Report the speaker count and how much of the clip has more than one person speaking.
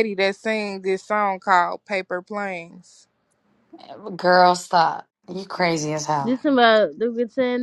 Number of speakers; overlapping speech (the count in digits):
3, about 1%